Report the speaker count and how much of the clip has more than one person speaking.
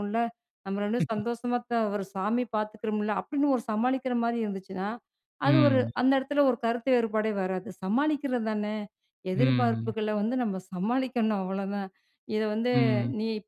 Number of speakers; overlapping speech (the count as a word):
two, about 8%